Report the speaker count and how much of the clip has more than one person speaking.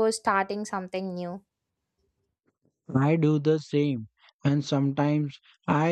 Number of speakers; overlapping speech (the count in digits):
2, no overlap